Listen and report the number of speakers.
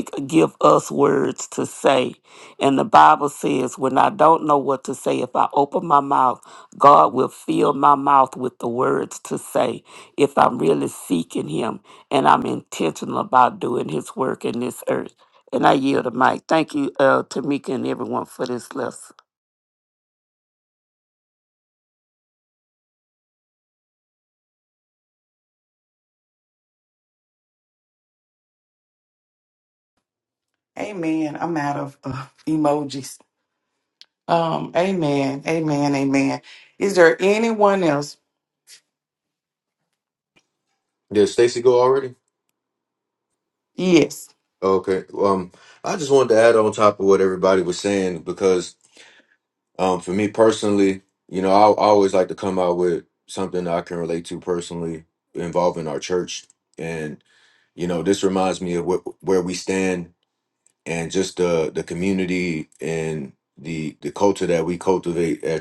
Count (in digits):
3